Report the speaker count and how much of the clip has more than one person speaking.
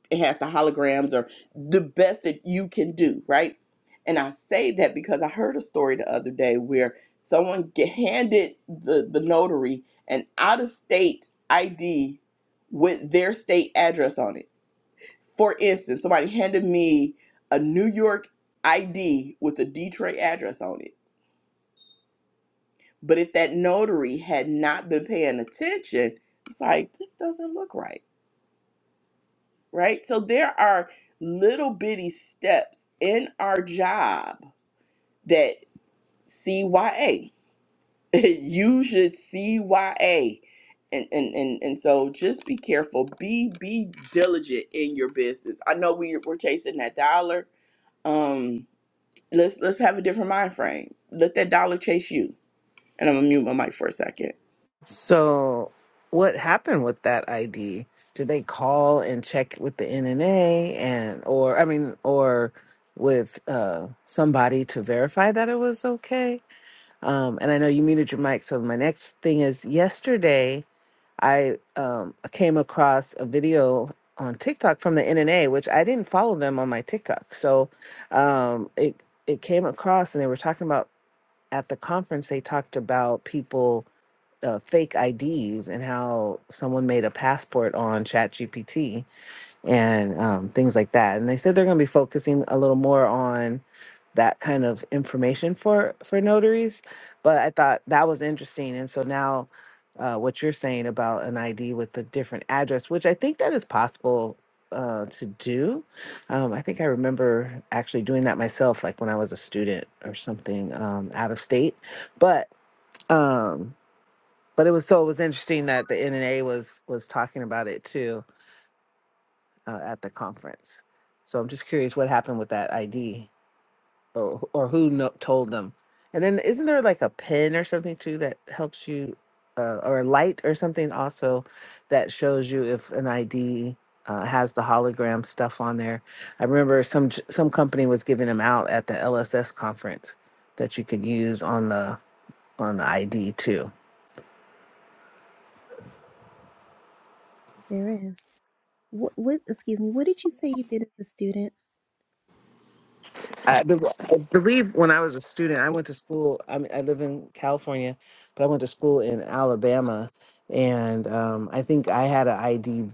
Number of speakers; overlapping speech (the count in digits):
3, no overlap